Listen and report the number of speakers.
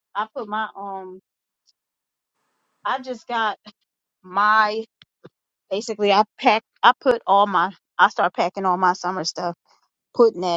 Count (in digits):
1